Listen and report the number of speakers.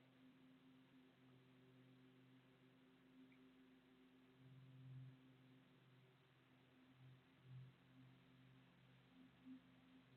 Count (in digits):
0